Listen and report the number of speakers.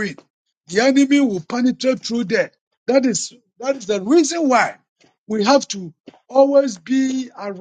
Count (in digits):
1